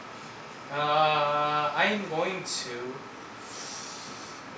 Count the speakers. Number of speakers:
one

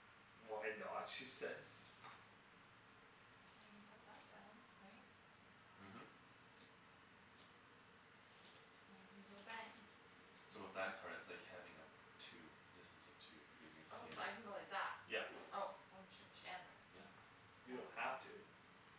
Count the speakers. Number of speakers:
three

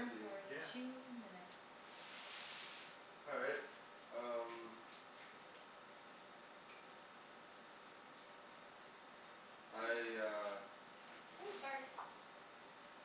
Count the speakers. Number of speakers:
two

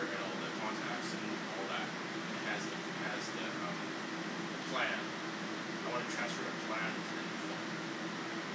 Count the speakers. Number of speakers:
one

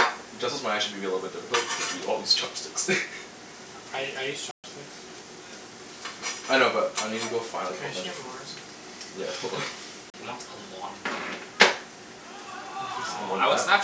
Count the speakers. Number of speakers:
three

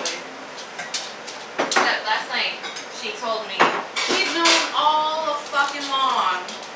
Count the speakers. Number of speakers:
one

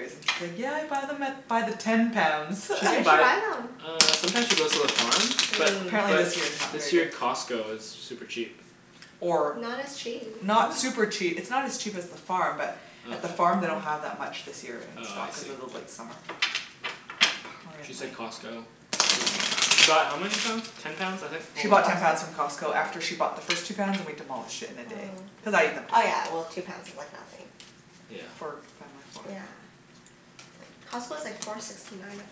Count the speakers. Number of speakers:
three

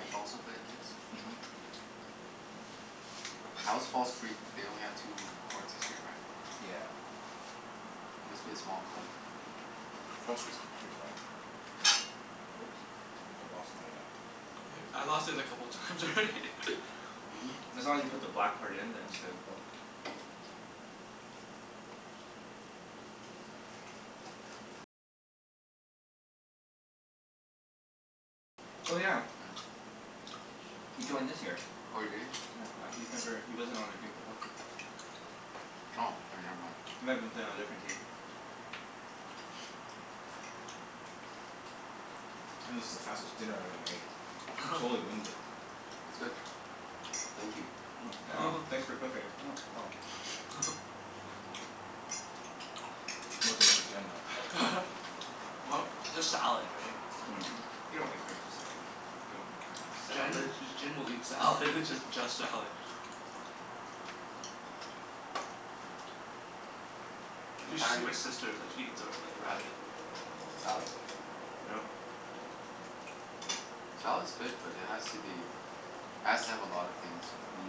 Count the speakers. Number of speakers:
four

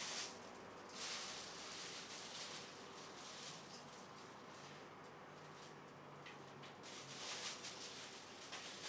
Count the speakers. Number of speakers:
zero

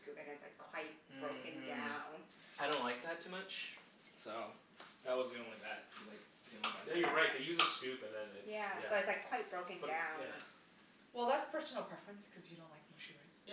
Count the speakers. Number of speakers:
four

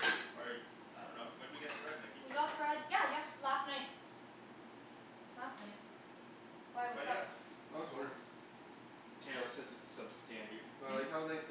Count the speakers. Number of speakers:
four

